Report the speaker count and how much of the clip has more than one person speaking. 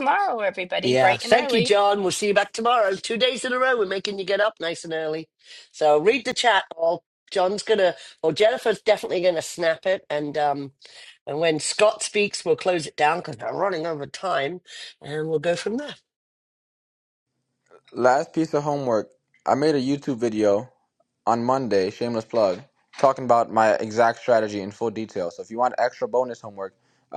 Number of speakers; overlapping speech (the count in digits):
3, about 3%